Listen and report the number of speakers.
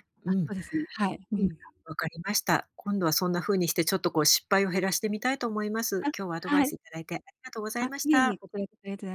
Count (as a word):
two